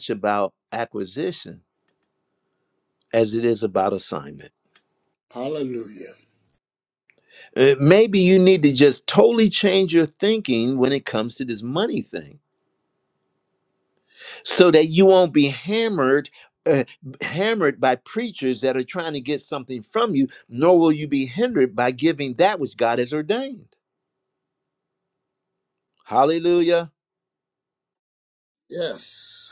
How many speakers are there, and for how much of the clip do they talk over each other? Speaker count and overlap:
two, no overlap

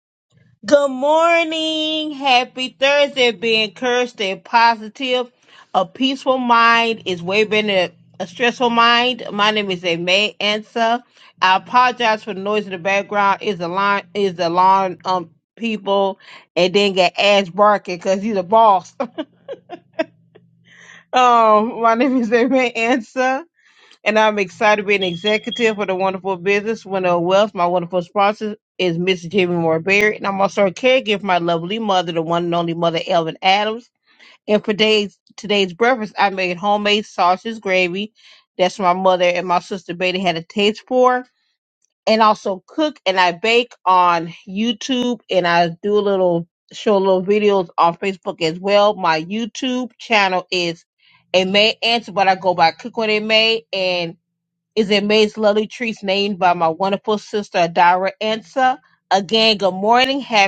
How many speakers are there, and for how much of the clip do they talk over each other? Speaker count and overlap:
one, no overlap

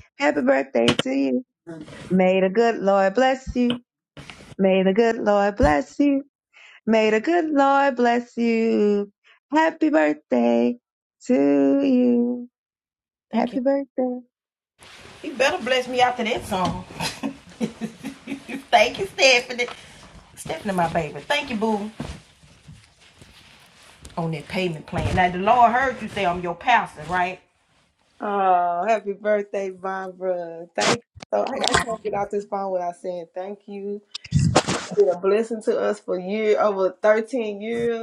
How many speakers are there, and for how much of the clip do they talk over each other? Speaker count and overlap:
three, about 1%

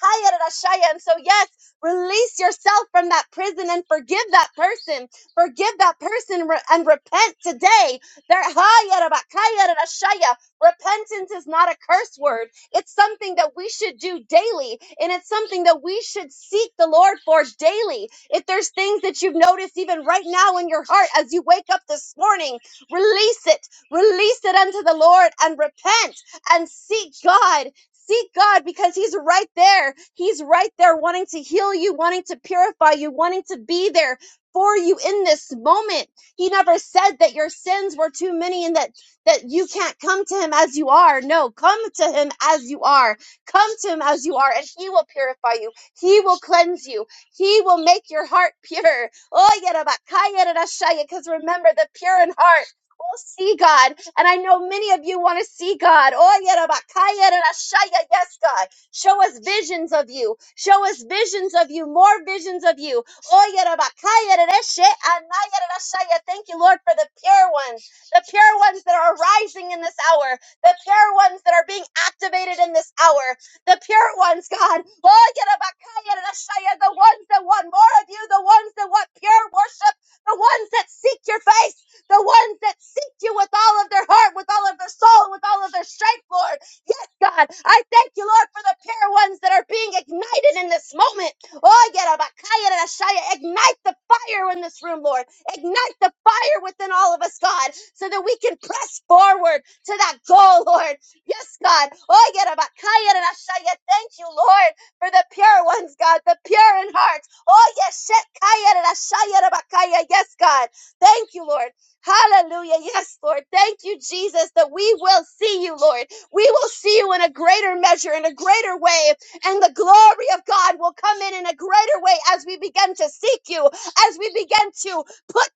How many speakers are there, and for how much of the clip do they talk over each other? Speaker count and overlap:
one, no overlap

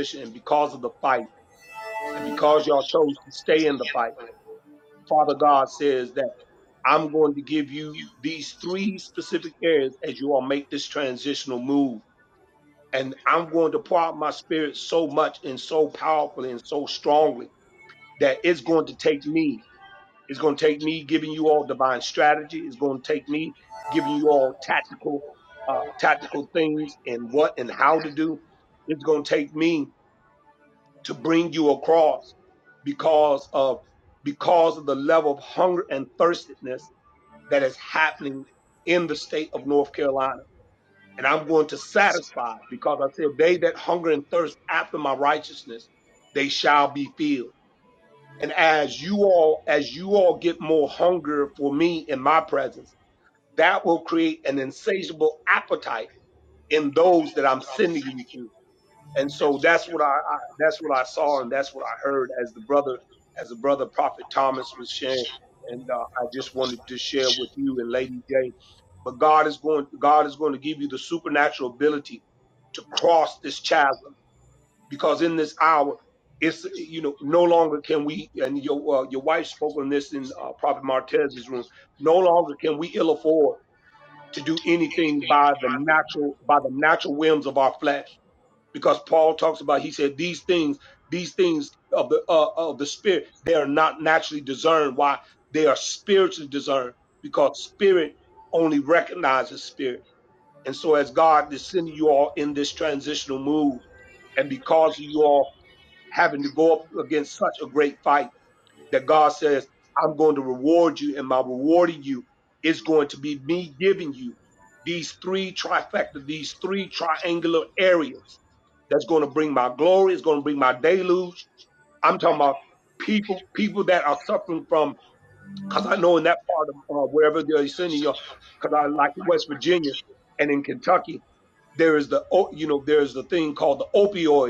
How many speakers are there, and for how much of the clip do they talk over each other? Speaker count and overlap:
one, no overlap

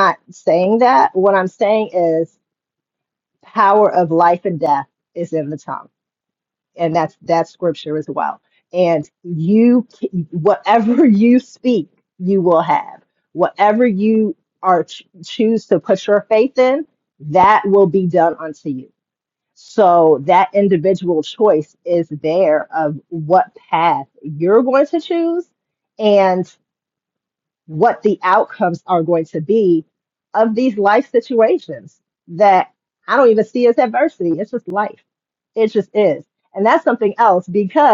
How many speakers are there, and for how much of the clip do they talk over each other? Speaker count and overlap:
one, no overlap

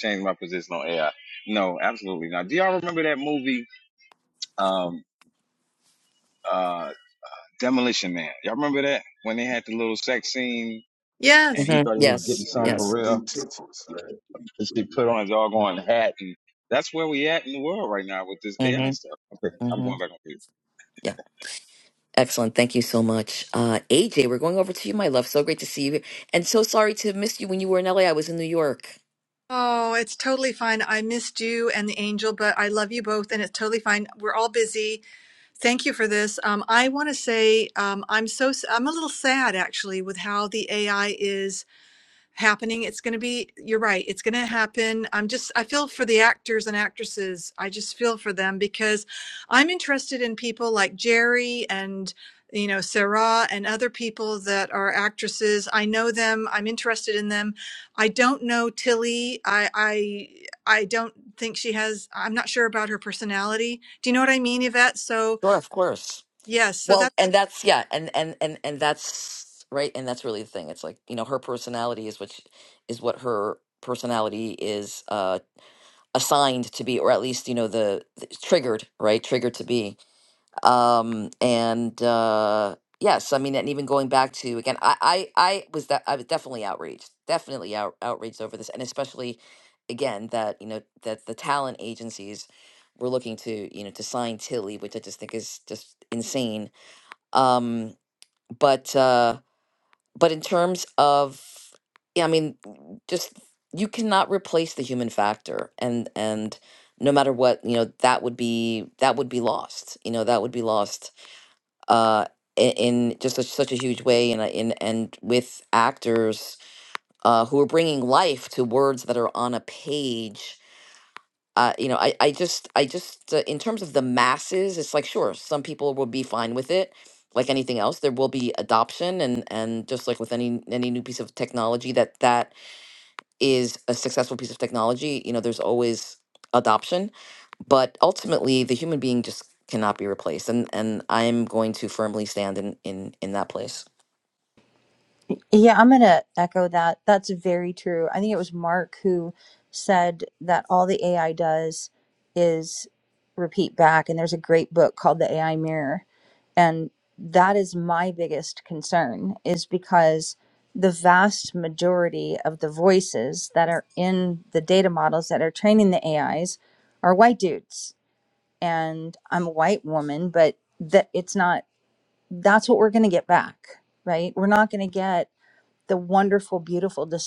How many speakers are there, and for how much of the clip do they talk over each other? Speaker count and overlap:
five, about 2%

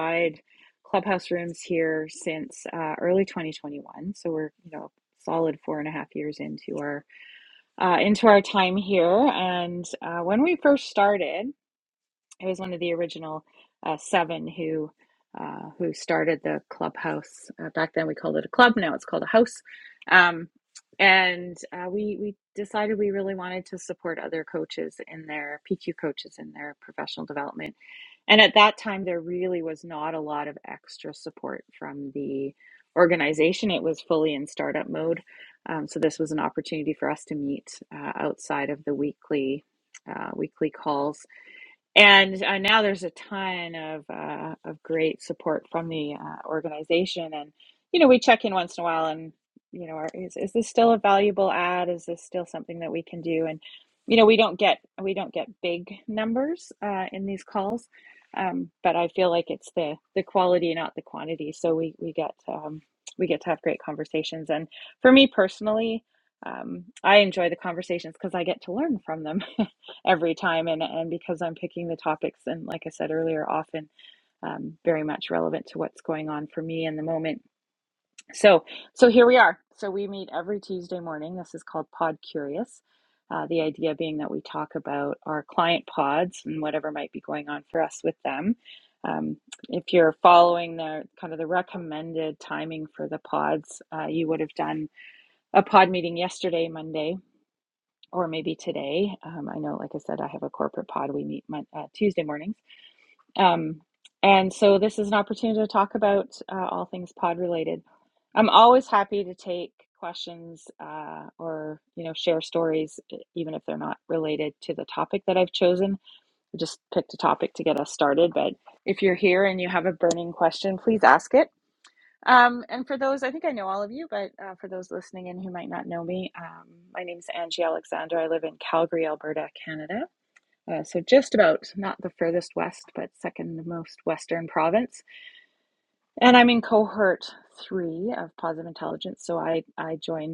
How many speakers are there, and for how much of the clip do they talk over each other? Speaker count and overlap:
one, no overlap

